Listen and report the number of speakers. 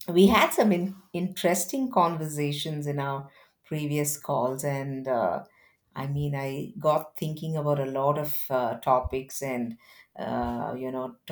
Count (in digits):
1